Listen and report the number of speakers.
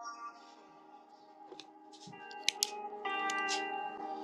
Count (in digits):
0